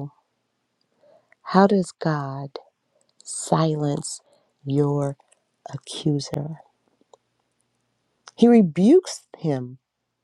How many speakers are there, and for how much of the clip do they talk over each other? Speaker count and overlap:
1, no overlap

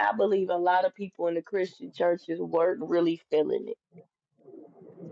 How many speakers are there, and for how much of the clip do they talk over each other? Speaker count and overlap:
1, no overlap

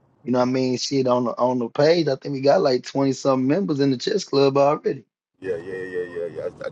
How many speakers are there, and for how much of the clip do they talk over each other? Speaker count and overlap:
2, no overlap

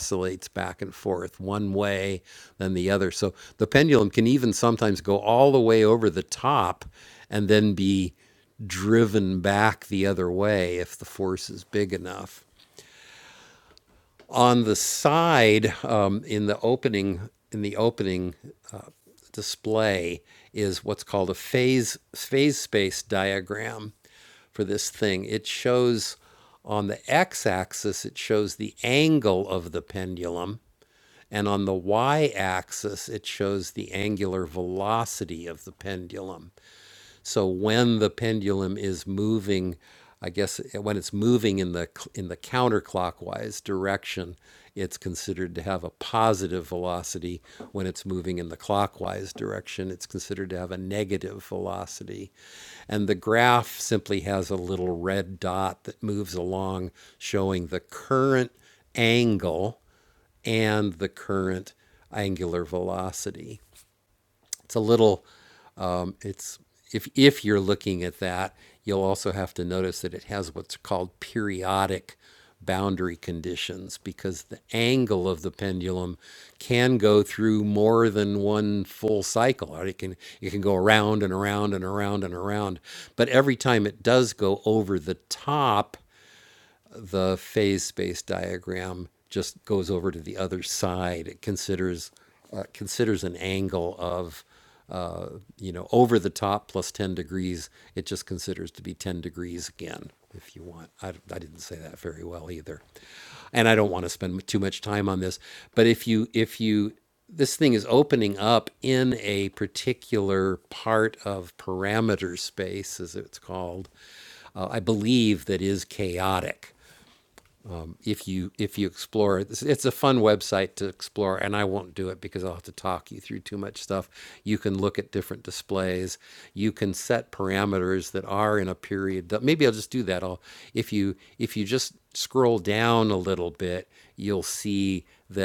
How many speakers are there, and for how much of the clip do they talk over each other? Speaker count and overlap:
1, no overlap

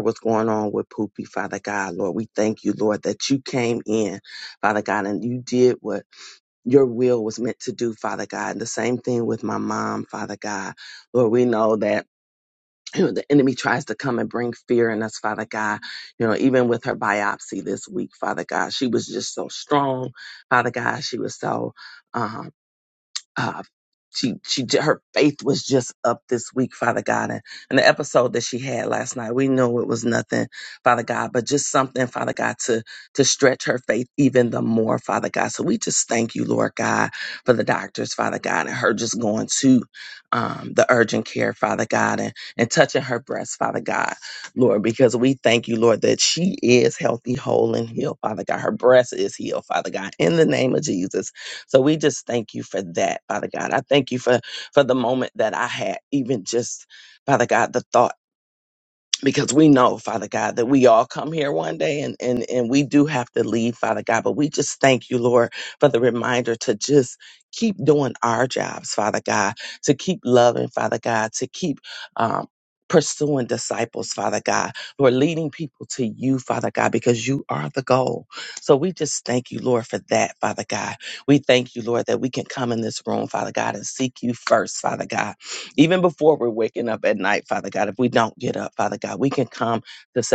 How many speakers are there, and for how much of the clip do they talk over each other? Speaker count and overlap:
1, no overlap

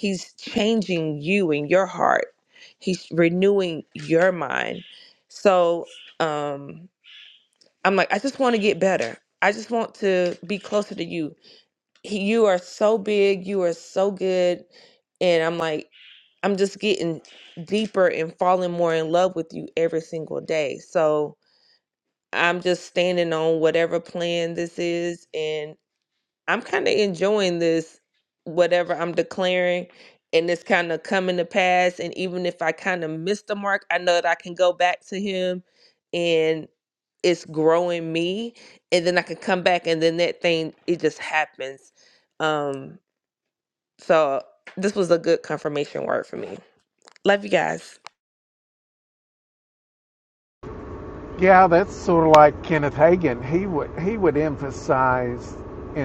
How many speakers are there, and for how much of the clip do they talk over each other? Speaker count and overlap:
2, no overlap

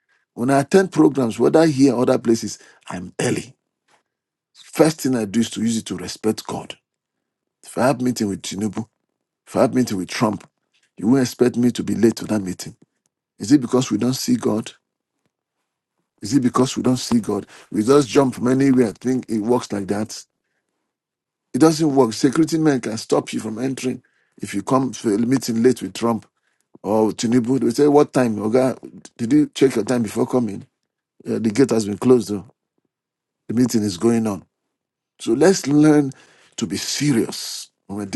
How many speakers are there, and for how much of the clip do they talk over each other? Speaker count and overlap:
1, no overlap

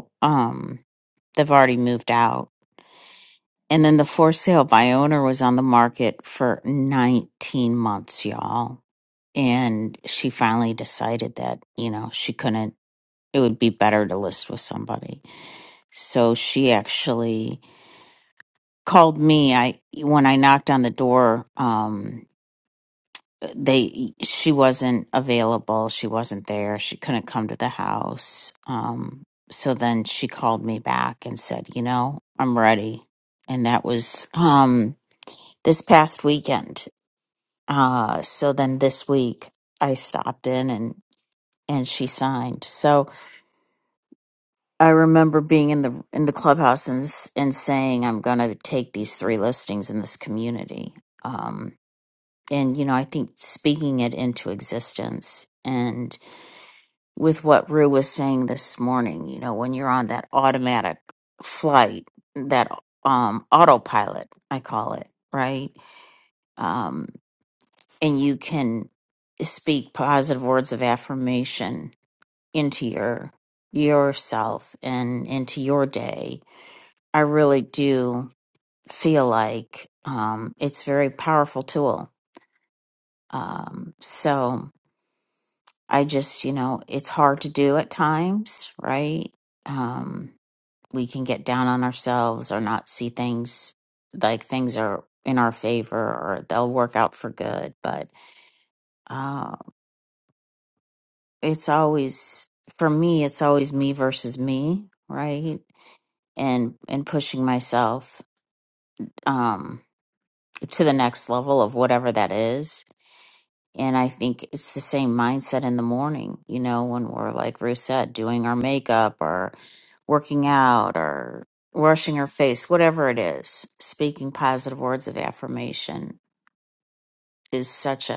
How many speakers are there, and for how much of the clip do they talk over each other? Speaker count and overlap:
1, no overlap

